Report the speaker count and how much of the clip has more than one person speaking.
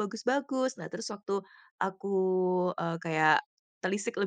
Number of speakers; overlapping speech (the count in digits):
1, no overlap